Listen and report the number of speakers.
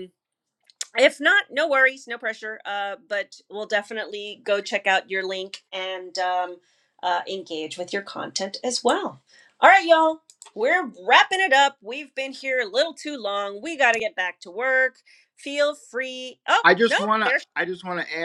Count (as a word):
two